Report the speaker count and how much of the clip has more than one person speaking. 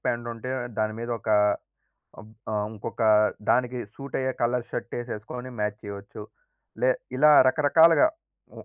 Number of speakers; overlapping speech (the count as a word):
one, no overlap